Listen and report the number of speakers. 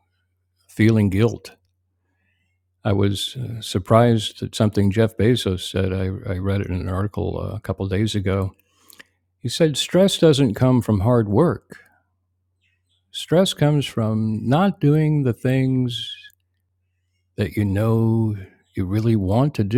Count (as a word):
one